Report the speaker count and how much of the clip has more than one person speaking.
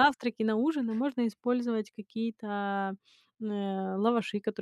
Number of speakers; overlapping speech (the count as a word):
one, no overlap